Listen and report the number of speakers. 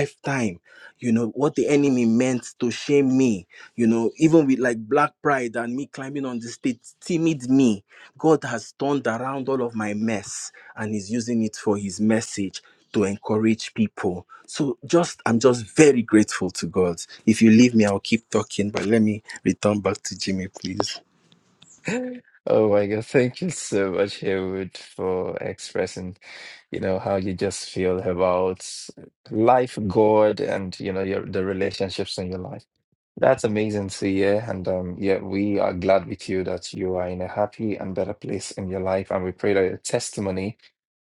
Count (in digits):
2